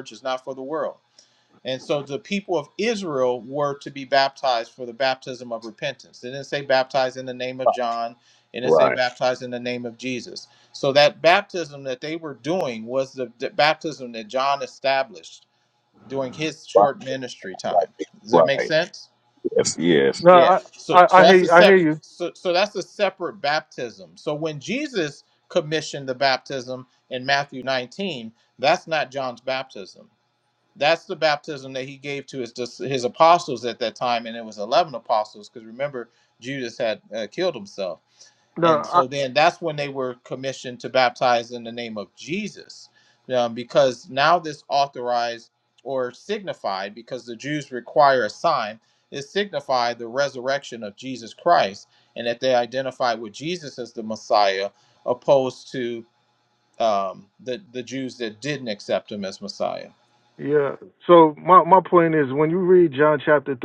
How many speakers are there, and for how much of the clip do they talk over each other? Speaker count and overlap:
3, about 4%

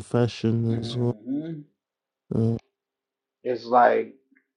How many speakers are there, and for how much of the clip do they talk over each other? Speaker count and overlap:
2, about 10%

